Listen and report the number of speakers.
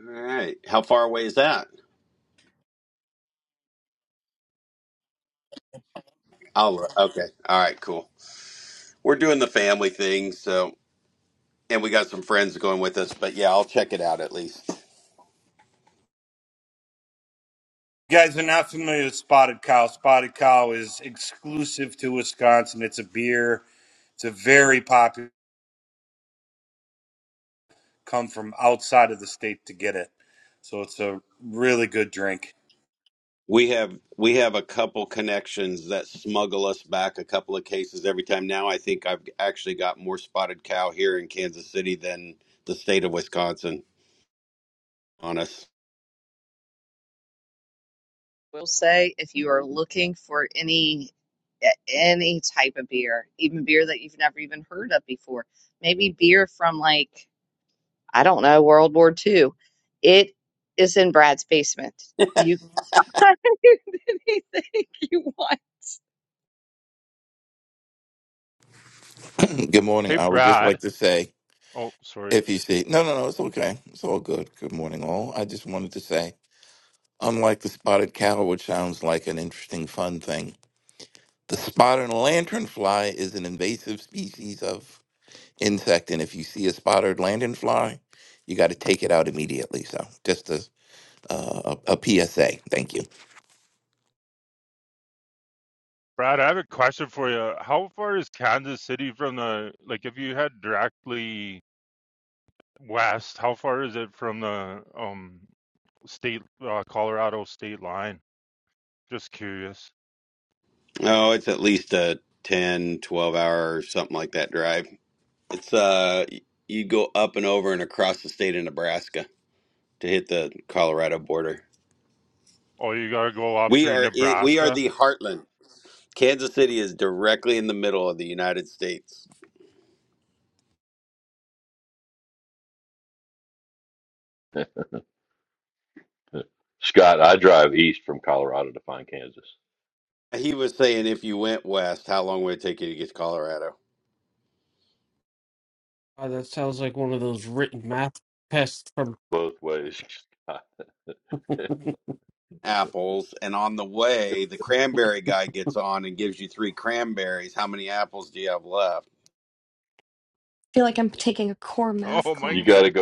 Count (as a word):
eight